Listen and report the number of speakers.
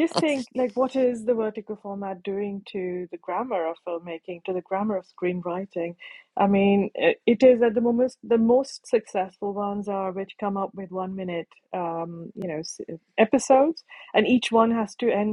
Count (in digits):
1